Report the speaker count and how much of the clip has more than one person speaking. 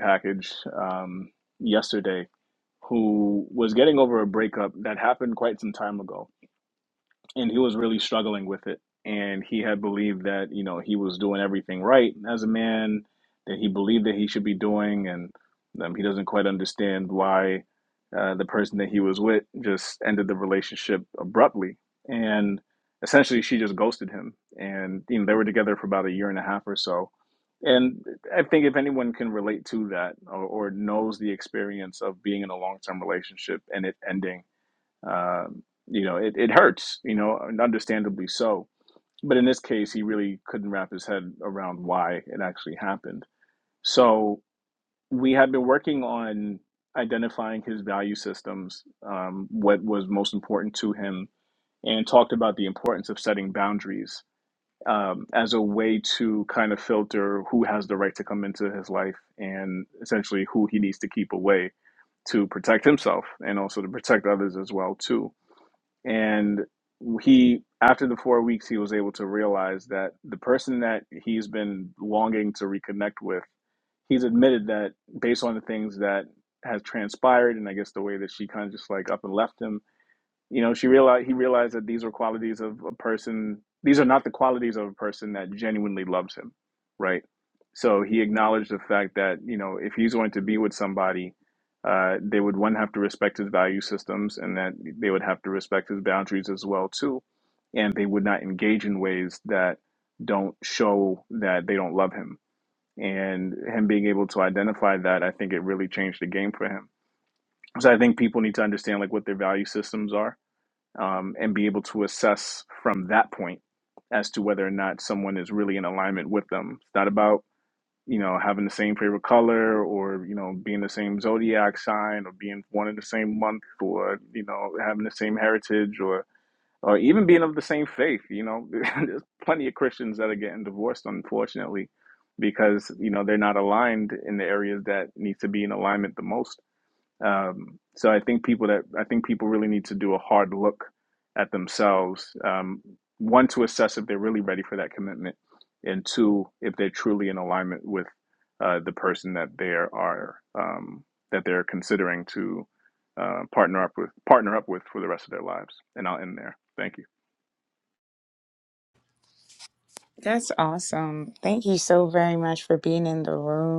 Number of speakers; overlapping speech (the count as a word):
two, no overlap